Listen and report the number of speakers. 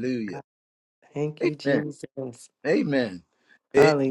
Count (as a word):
two